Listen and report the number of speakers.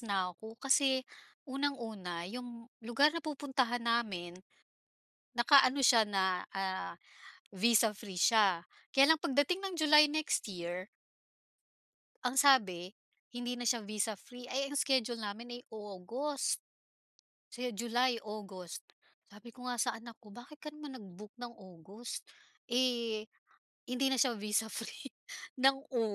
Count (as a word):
one